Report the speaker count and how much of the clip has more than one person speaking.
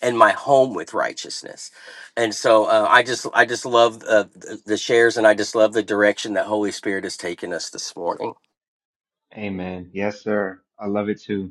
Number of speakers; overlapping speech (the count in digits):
2, no overlap